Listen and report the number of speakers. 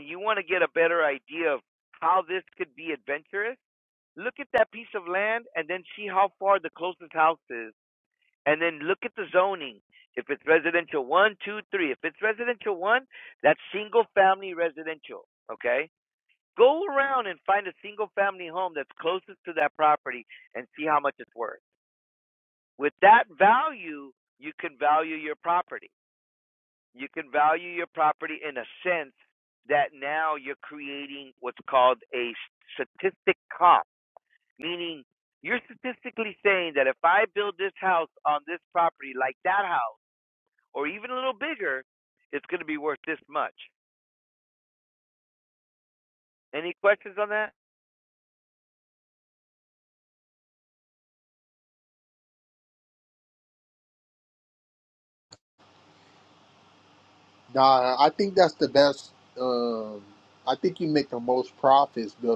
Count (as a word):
two